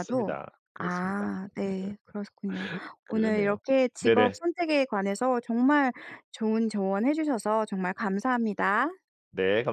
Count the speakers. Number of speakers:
2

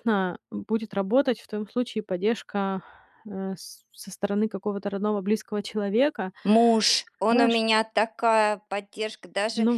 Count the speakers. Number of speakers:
2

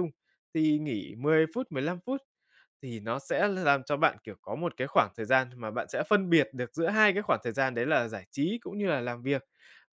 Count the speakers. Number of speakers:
1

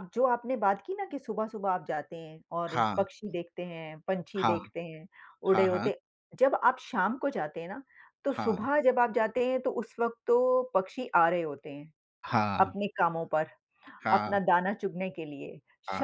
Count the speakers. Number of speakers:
2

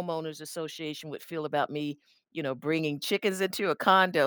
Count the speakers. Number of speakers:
1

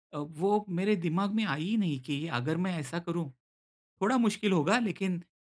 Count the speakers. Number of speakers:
1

